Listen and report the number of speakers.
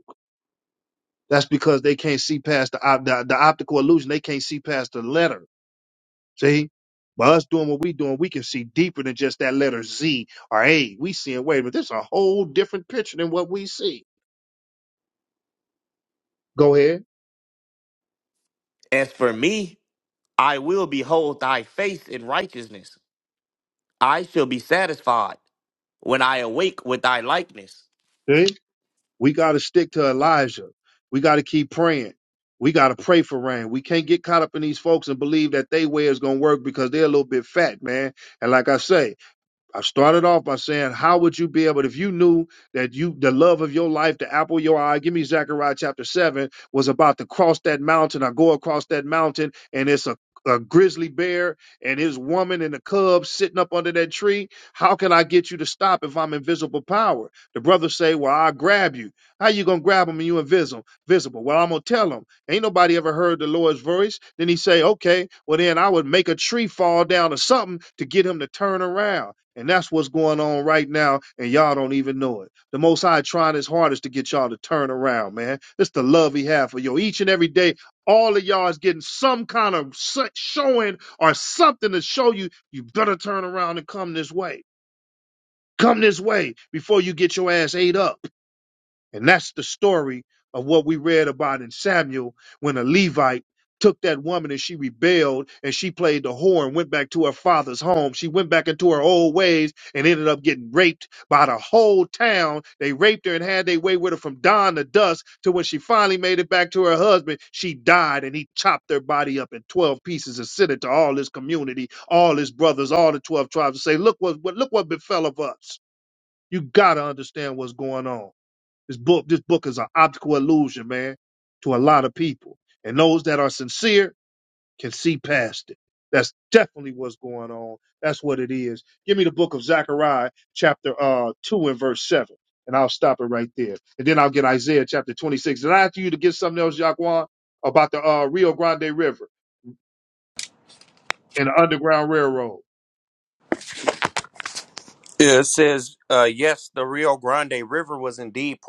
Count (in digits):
3